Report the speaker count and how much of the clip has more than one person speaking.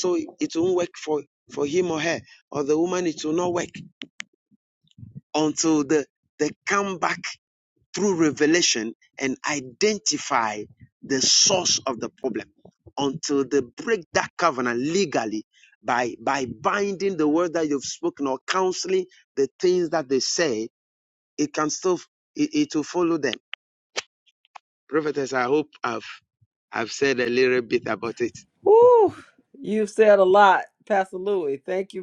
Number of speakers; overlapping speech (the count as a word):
two, no overlap